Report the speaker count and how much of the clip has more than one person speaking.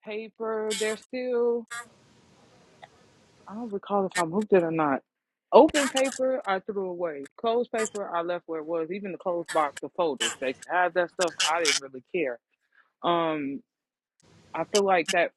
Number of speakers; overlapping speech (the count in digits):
1, no overlap